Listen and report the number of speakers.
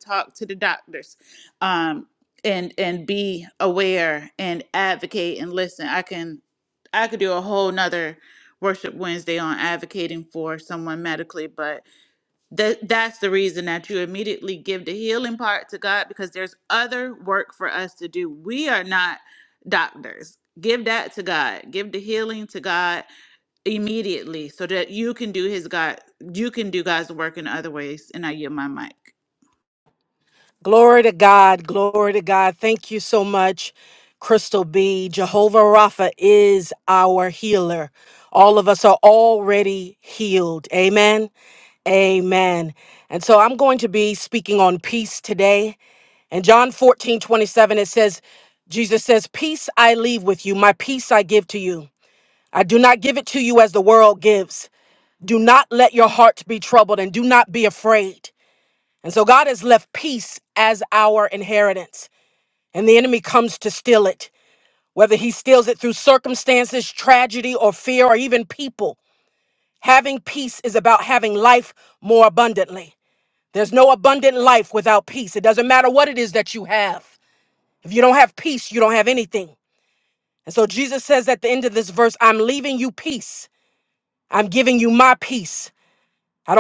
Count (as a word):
two